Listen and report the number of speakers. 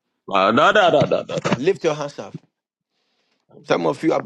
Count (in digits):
2